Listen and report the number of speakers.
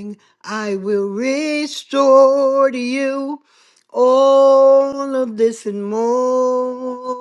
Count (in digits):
1